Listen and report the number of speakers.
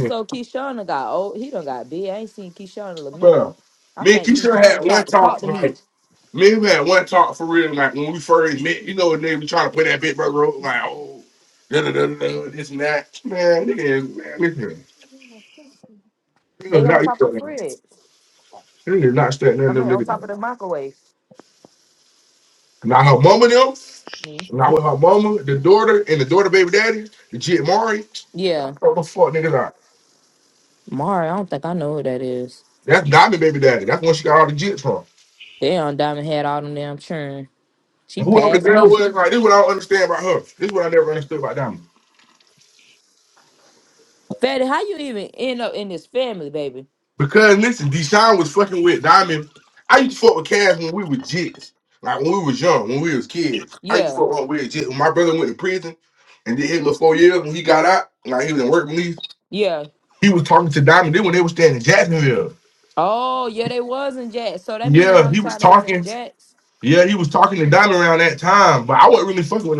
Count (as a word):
two